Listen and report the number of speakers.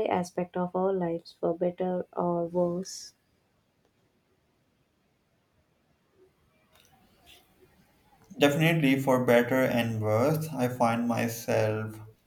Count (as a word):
two